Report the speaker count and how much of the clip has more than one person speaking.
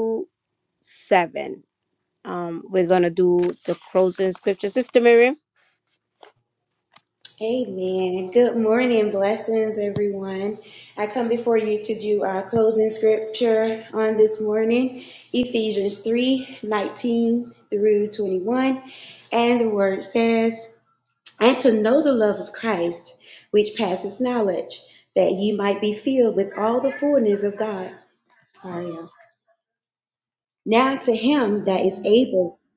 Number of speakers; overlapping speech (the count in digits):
2, no overlap